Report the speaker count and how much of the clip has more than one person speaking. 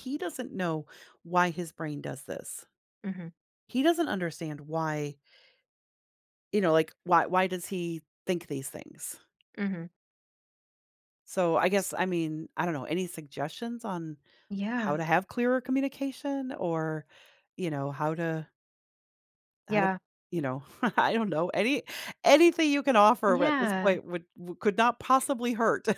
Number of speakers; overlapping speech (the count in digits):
2, about 4%